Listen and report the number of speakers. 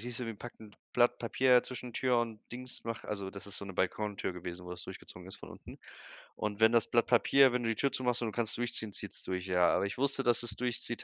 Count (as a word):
one